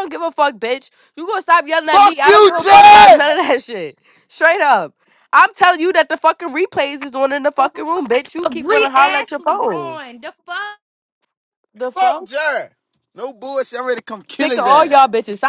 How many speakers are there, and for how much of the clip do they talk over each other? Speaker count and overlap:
3, about 24%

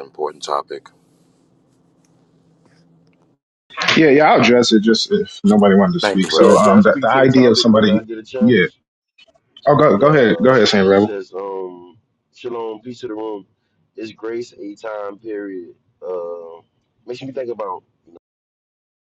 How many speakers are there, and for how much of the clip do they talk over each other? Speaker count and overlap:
3, about 17%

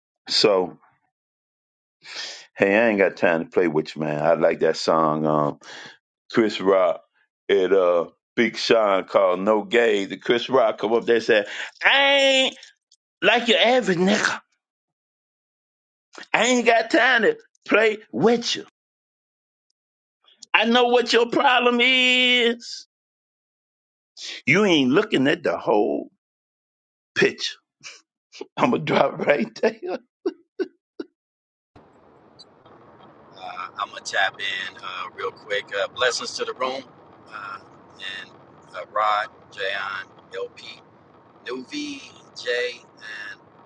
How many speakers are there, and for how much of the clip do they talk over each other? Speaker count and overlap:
2, no overlap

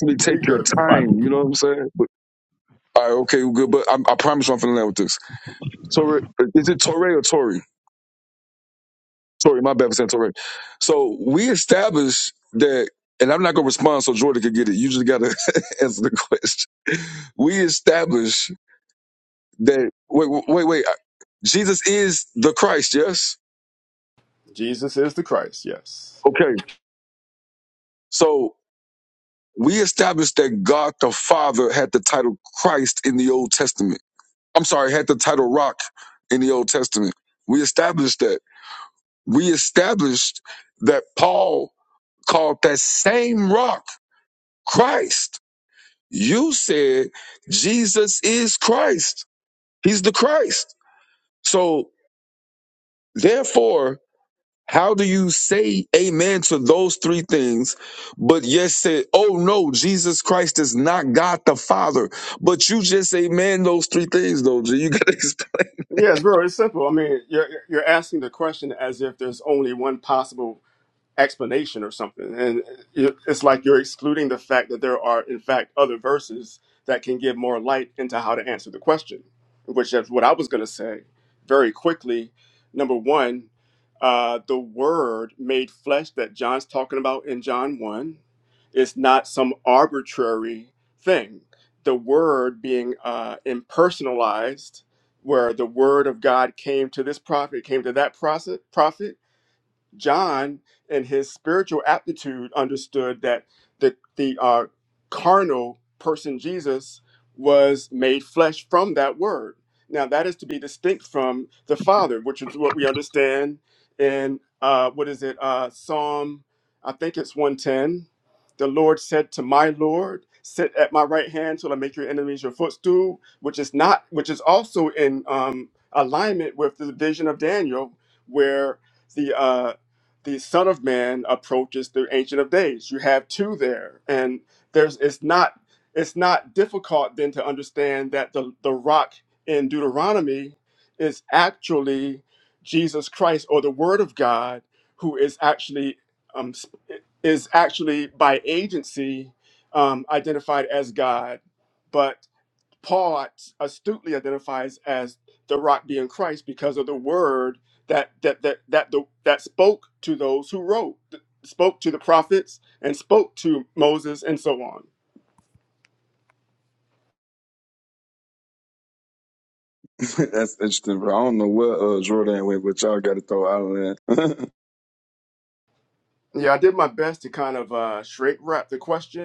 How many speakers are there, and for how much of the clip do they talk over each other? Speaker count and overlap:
2, about 1%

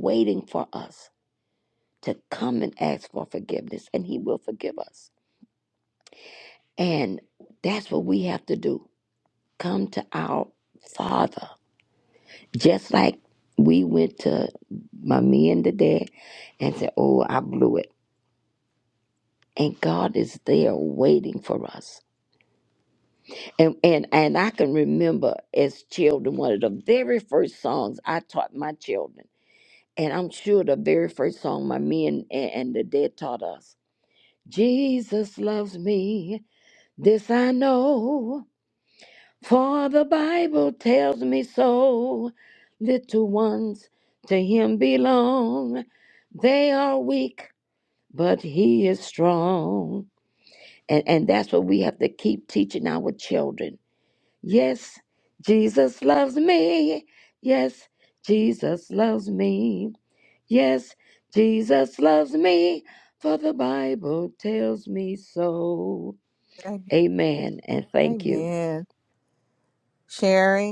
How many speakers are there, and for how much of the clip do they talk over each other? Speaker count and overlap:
2, about 1%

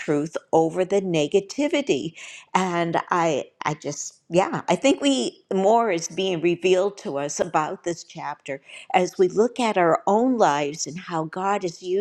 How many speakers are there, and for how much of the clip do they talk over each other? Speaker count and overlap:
1, no overlap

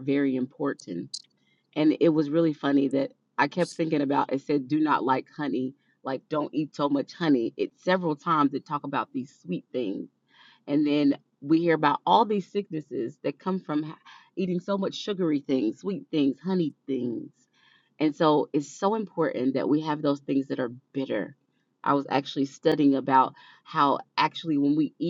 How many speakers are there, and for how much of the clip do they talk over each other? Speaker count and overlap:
1, no overlap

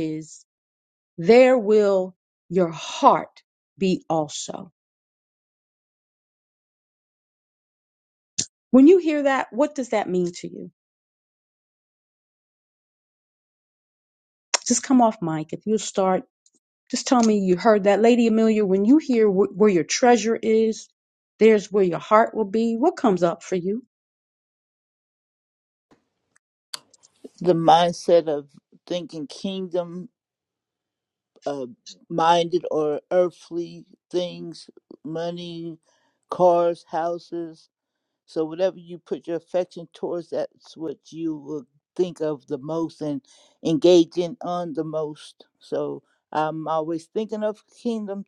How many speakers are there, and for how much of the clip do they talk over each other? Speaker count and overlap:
2, no overlap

